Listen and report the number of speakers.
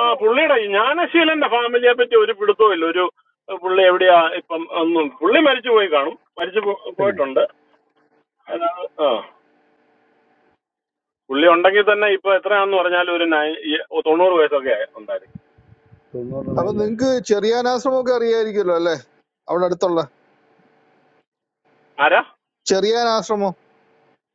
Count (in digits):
3